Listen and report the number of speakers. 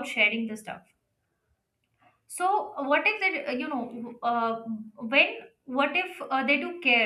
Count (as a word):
one